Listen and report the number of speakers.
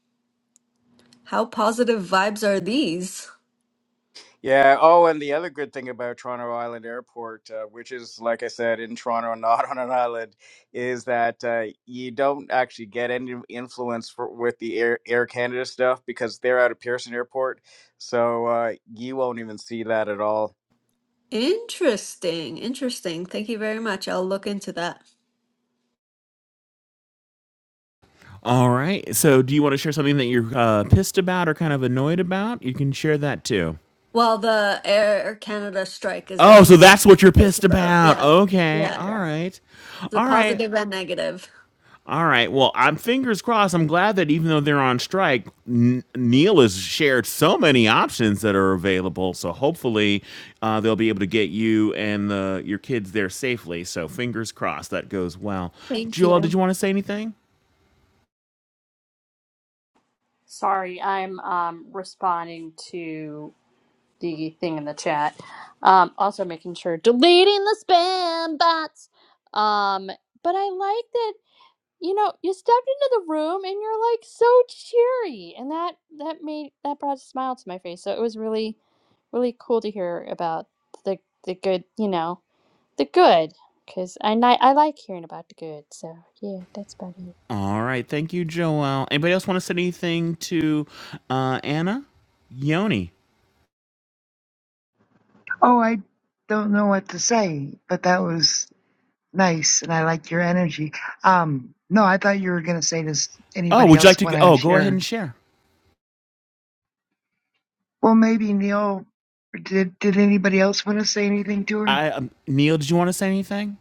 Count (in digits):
5